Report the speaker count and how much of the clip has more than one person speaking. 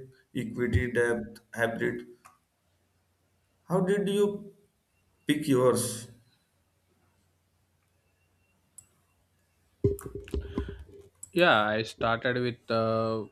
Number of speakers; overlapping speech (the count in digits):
2, no overlap